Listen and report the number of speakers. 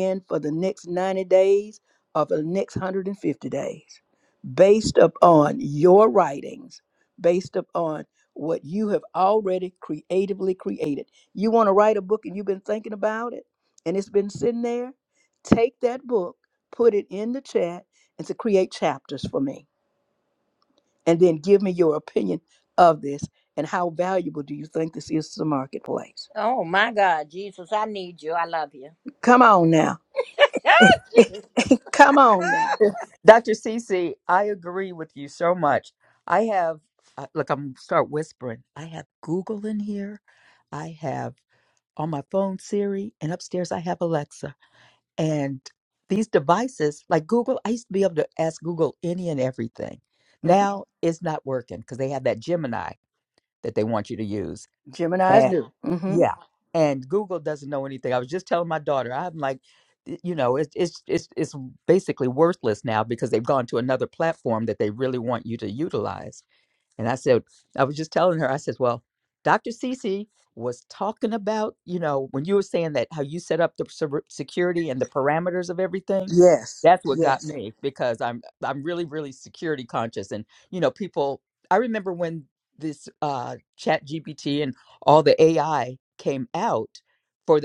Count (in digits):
3